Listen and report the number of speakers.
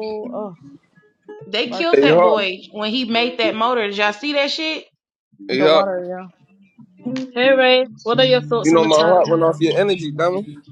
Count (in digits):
4